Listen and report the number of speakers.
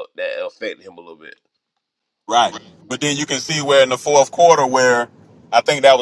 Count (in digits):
2